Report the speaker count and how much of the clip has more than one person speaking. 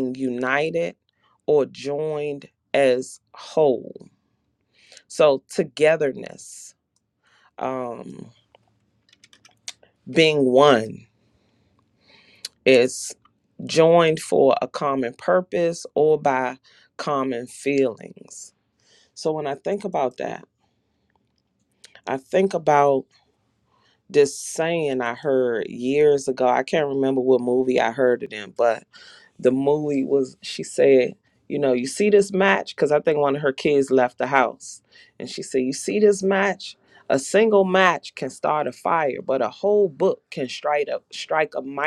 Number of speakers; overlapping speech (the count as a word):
one, no overlap